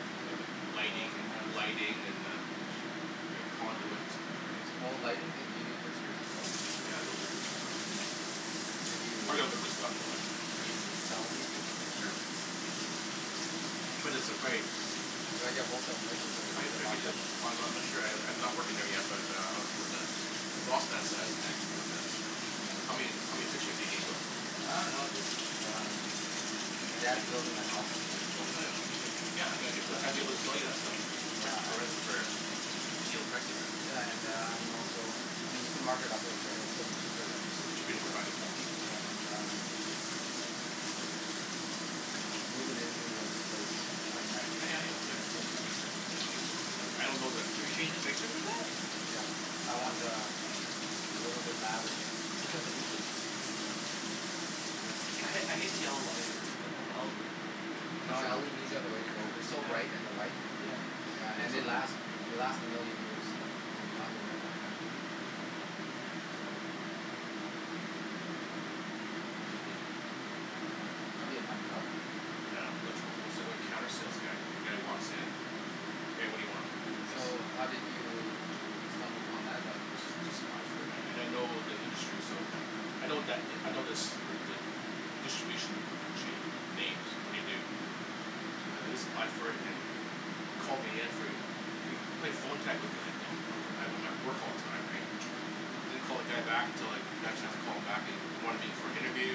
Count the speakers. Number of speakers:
three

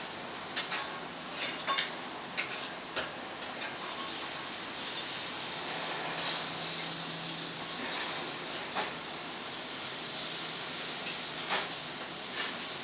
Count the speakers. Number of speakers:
zero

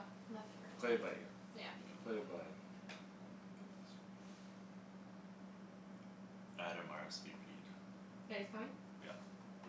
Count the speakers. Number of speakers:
three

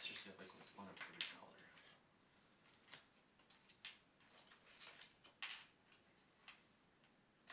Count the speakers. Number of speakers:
one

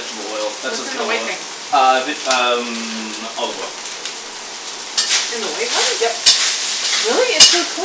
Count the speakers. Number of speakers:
two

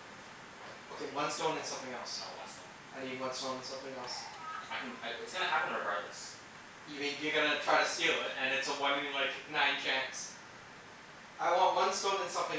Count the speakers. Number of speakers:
two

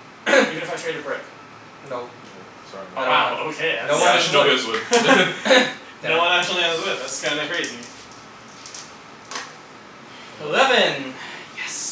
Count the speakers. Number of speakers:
three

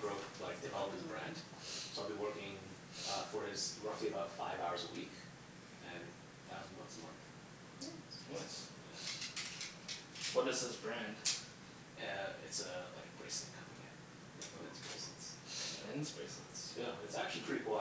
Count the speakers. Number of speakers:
two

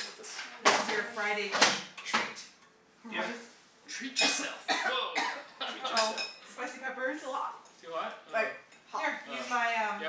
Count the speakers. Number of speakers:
four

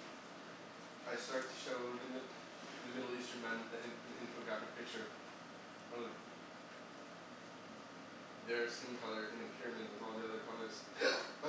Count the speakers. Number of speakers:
one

